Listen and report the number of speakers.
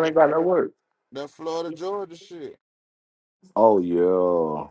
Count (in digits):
2